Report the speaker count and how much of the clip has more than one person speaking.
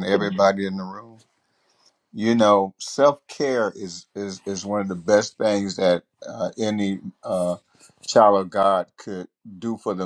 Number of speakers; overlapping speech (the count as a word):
one, no overlap